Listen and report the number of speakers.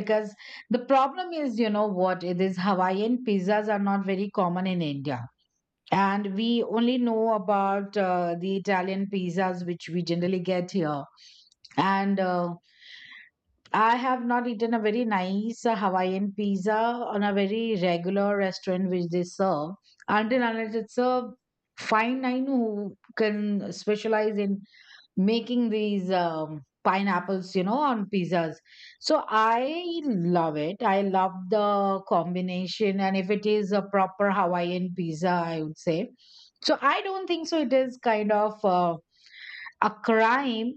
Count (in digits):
1